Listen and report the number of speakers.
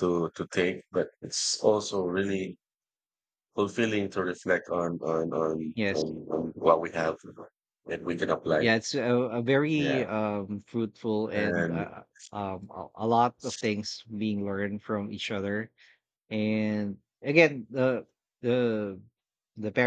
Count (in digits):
2